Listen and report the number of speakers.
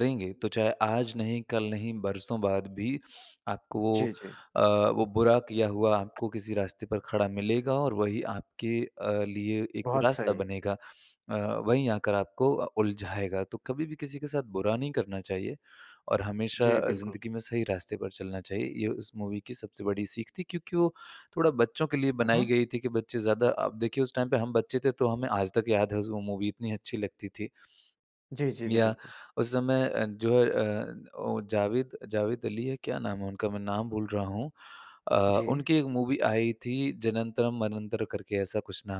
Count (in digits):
2